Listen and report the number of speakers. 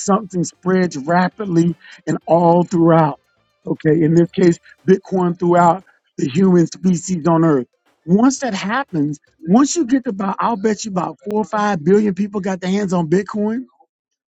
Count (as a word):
one